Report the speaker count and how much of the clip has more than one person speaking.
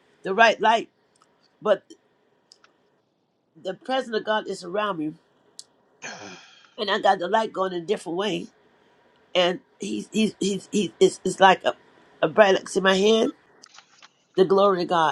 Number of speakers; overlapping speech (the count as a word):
one, no overlap